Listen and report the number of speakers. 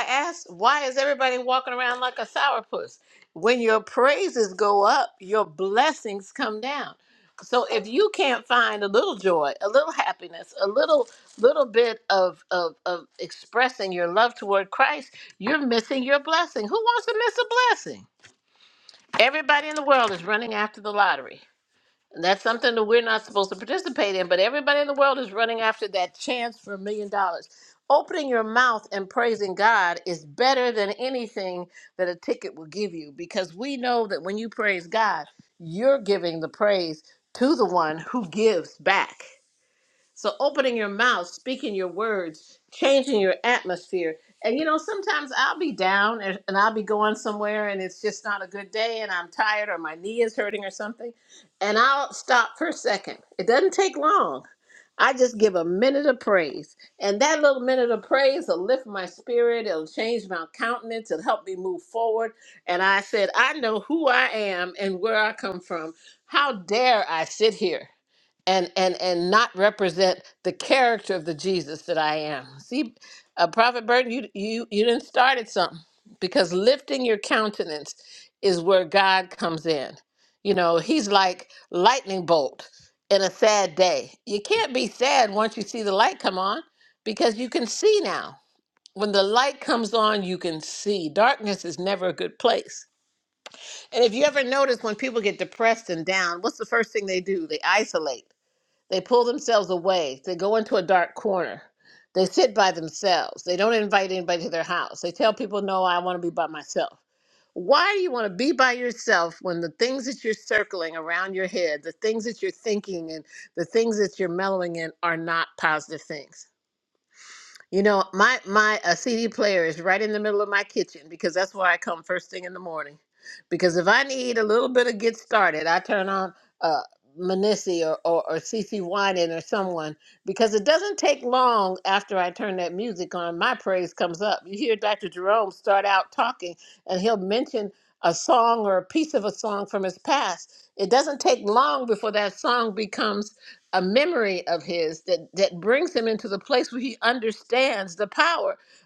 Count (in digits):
1